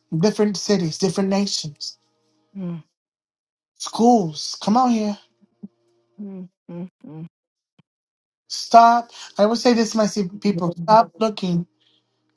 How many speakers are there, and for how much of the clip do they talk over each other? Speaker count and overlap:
2, about 2%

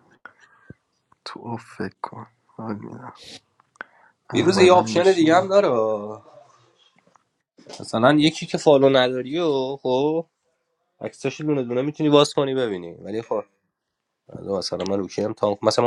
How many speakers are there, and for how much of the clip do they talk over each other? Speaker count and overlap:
2, about 7%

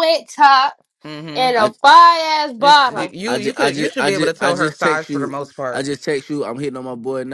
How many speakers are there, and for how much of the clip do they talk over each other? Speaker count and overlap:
3, about 44%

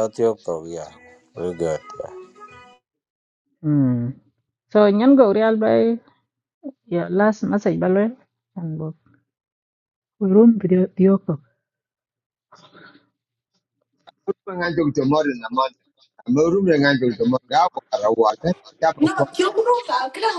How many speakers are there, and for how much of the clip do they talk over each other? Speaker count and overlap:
4, about 1%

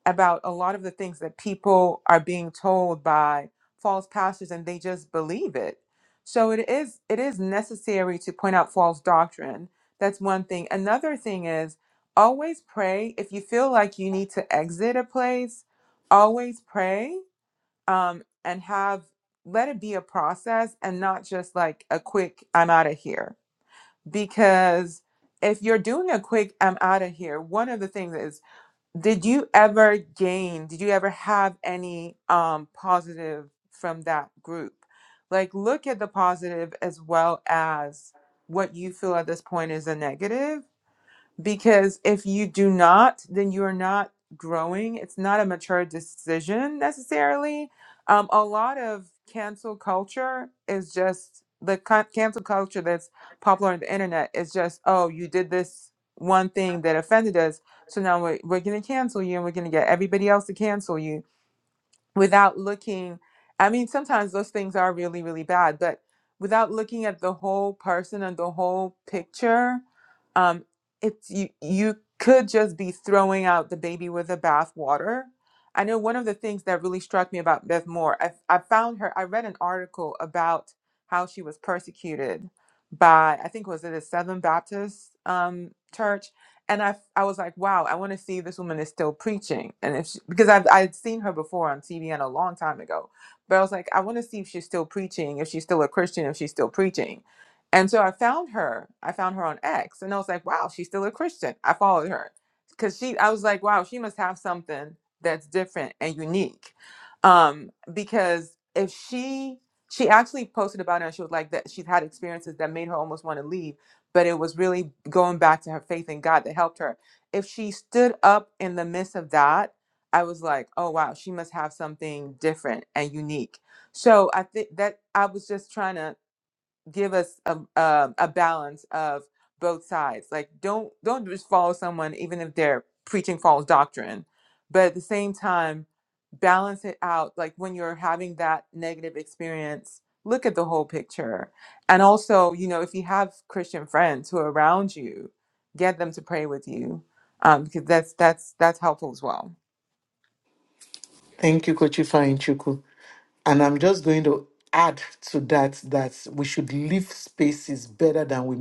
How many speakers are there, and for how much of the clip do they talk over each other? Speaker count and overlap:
2, no overlap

